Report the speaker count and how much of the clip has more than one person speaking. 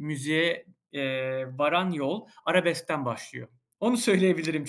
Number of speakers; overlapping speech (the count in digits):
1, no overlap